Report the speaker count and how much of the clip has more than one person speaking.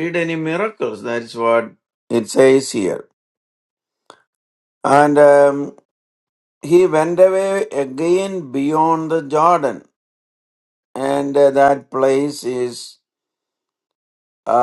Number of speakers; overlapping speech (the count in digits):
1, no overlap